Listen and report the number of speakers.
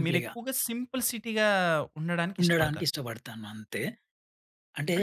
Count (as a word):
two